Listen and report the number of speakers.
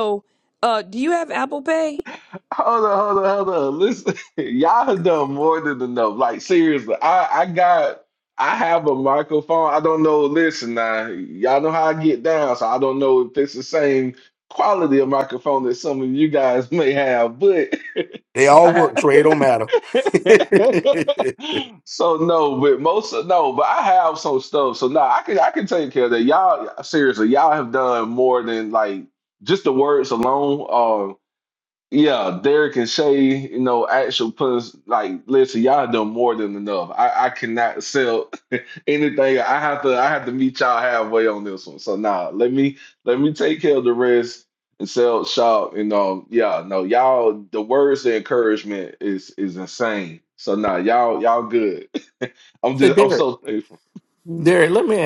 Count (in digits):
4